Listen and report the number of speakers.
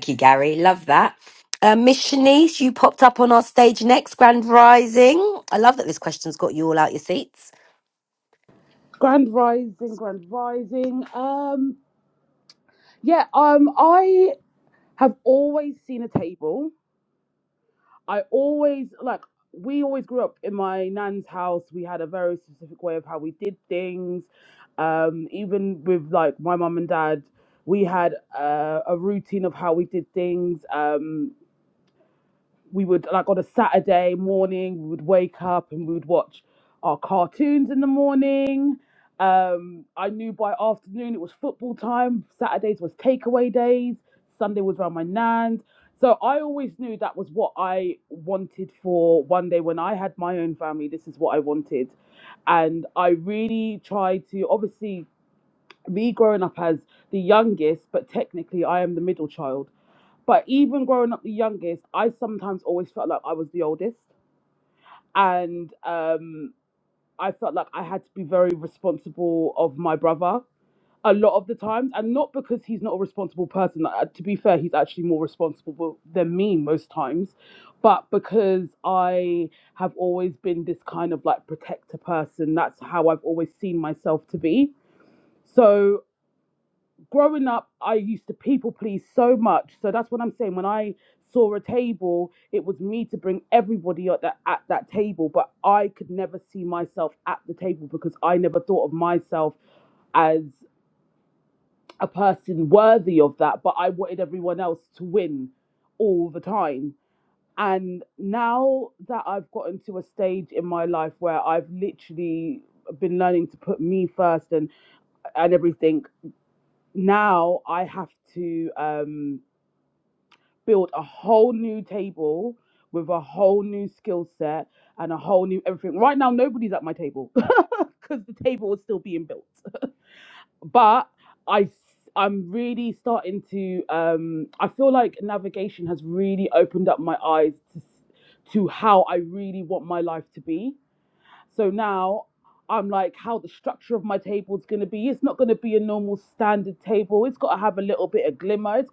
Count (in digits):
2